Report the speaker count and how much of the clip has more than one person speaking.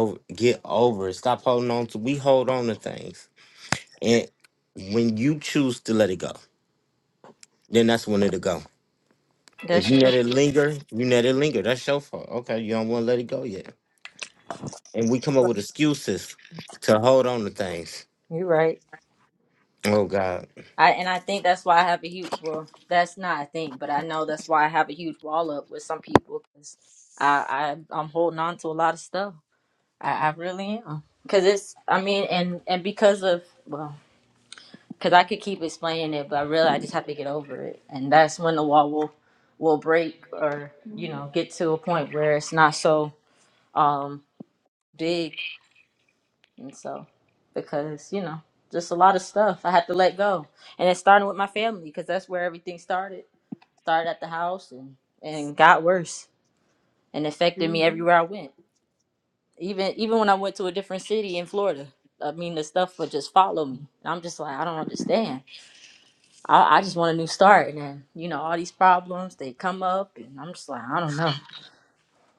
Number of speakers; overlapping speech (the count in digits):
2, about 1%